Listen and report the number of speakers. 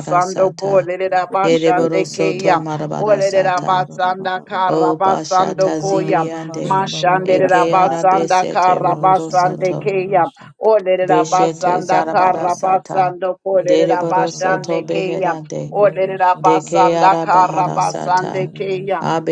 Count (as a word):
three